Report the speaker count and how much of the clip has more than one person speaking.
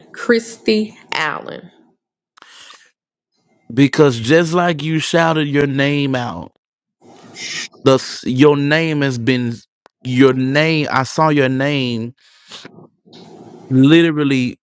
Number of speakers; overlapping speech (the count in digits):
2, no overlap